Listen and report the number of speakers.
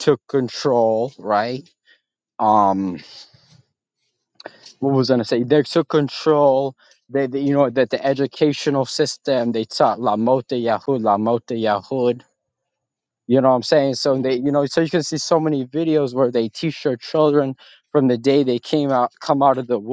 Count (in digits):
1